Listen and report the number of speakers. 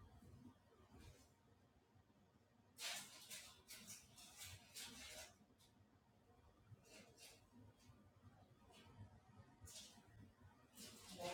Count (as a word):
zero